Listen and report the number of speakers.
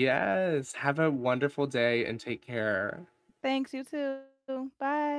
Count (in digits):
2